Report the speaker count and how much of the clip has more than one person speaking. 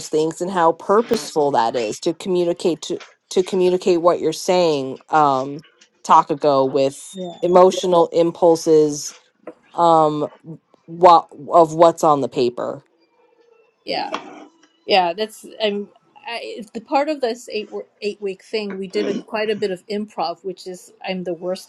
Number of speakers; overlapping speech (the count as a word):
two, no overlap